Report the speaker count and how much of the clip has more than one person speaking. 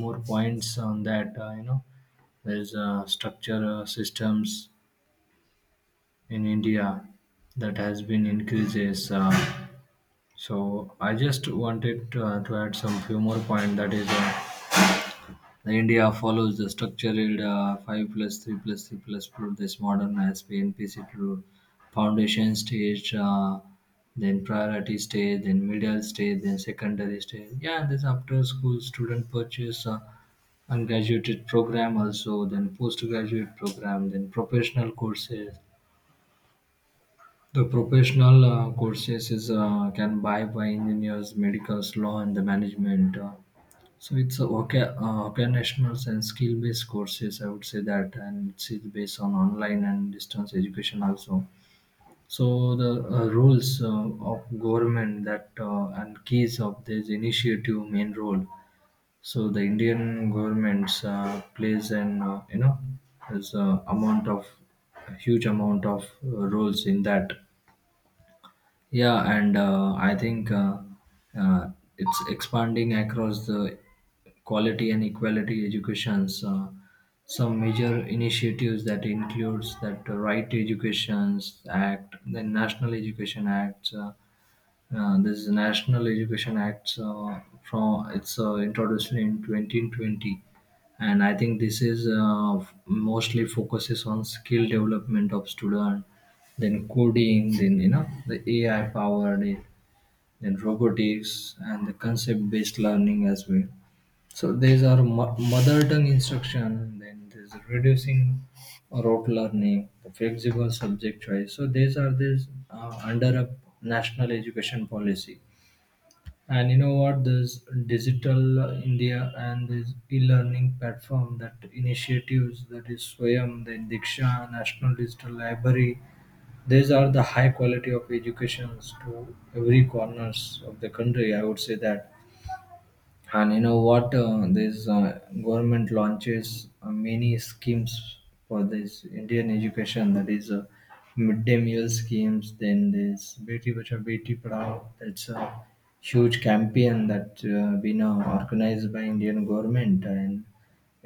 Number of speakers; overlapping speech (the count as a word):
one, no overlap